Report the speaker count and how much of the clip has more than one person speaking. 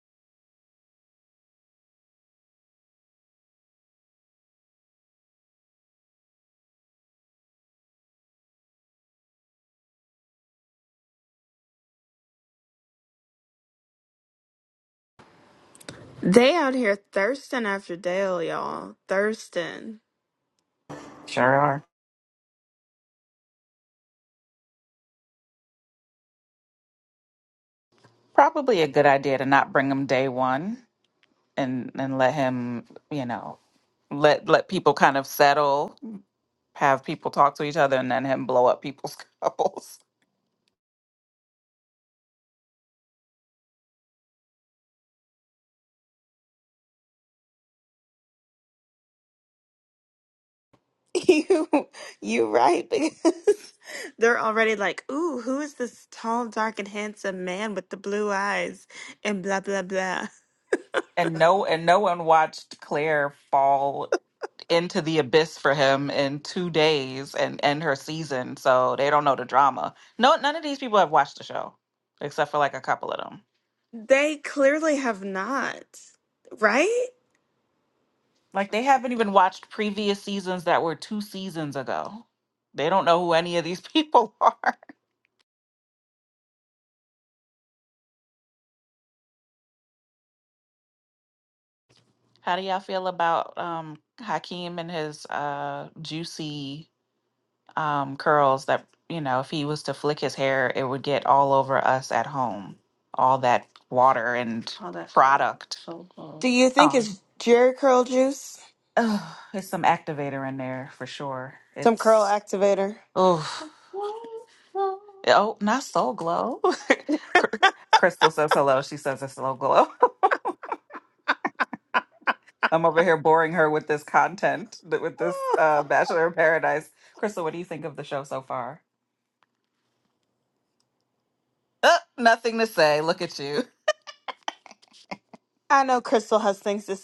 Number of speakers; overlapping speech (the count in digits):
2, under 1%